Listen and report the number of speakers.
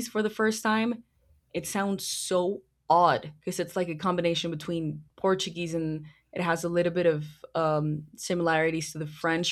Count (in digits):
1